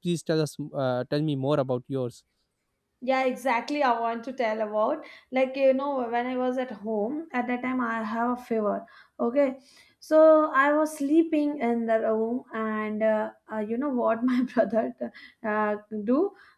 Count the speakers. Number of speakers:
2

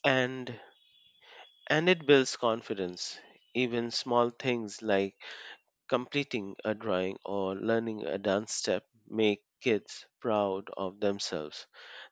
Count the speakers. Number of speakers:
1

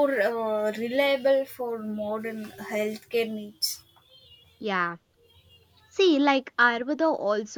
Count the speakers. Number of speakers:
2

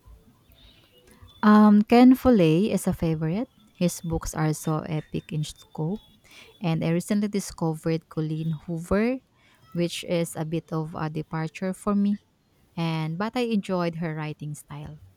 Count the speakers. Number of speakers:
1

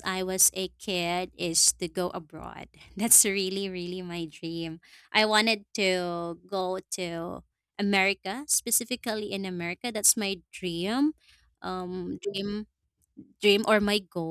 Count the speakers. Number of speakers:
1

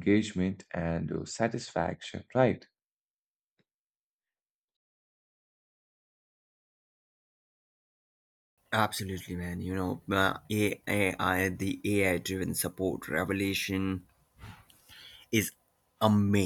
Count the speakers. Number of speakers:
2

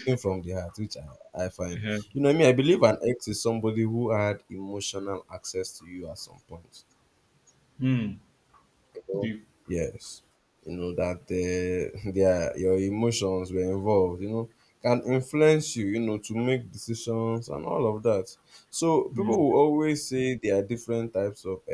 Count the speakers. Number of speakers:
2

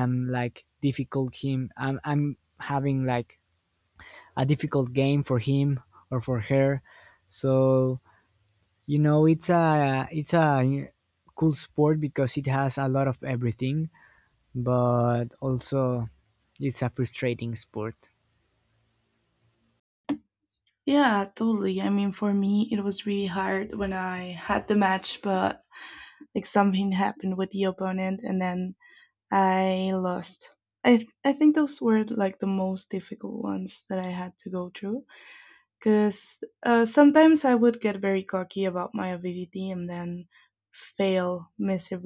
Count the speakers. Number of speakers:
2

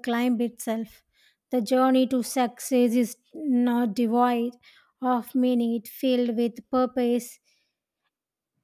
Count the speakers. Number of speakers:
1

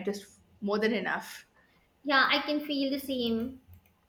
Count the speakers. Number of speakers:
2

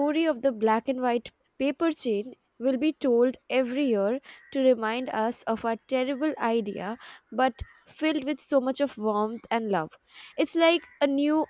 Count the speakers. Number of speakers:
1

